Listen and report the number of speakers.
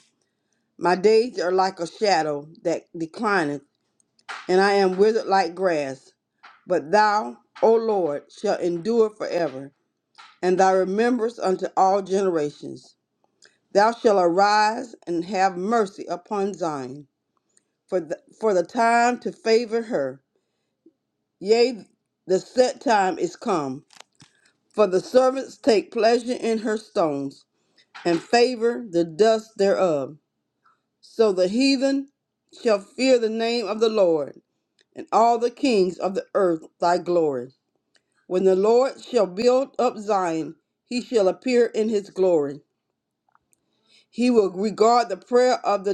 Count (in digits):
1